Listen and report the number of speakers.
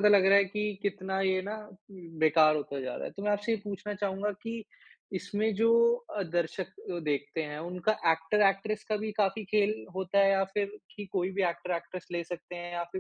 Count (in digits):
1